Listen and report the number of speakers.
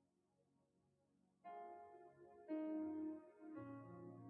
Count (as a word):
zero